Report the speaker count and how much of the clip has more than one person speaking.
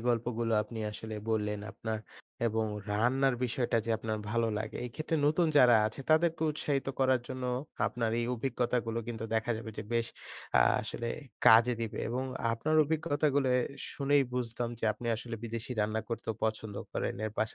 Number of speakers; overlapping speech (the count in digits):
1, no overlap